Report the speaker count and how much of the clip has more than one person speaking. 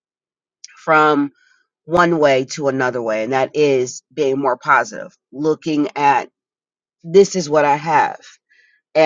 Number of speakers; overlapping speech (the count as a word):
one, no overlap